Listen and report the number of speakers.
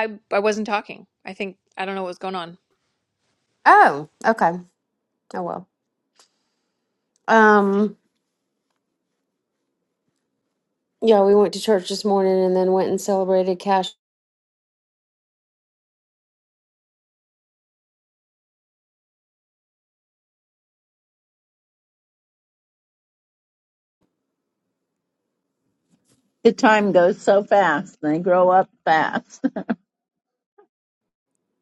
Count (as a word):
three